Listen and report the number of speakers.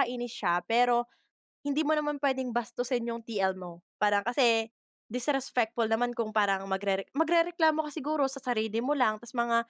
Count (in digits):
1